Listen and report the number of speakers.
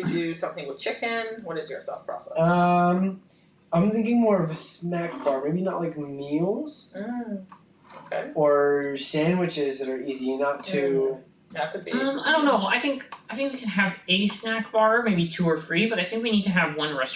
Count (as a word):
three